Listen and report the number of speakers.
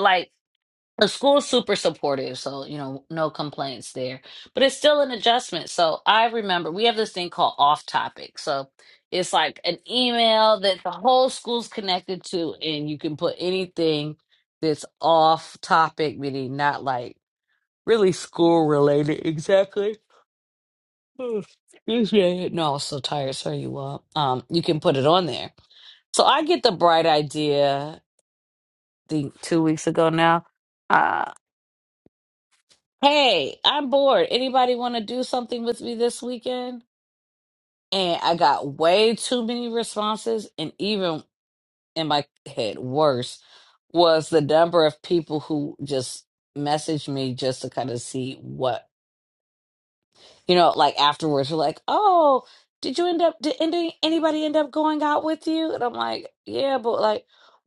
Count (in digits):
1